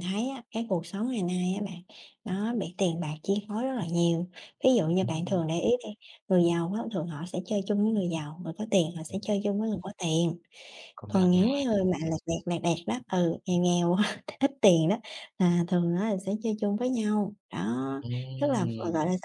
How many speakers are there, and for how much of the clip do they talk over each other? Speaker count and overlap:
2, about 7%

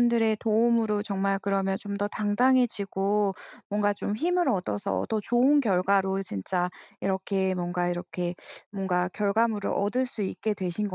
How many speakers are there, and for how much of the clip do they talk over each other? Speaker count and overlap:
1, no overlap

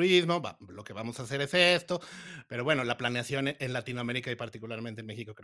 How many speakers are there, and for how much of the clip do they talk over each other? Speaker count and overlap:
1, no overlap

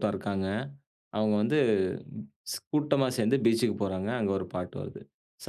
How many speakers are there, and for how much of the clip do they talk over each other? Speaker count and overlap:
1, no overlap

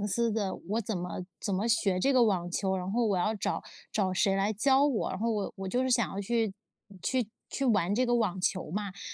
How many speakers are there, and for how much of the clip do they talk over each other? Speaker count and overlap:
1, no overlap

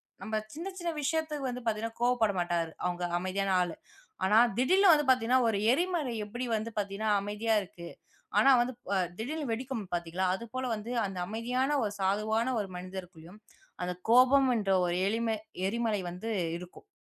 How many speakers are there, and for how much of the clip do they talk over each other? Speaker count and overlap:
1, no overlap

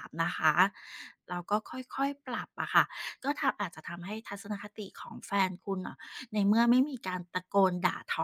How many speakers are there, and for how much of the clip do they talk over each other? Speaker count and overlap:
1, no overlap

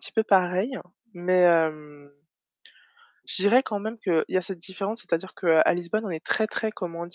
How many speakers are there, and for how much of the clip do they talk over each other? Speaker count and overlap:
1, no overlap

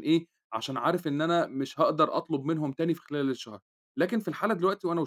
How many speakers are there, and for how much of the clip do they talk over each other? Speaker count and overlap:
1, no overlap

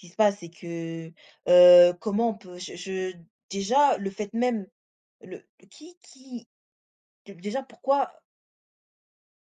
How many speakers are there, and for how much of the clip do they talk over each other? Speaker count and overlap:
1, no overlap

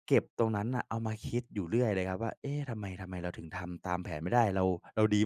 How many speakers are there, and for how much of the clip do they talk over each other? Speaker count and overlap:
1, no overlap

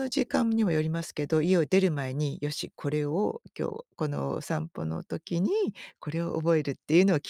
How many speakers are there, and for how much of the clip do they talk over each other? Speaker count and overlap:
1, no overlap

